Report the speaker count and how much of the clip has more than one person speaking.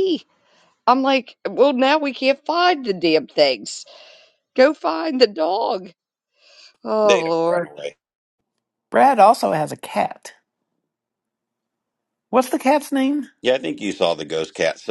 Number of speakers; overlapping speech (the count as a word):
three, about 4%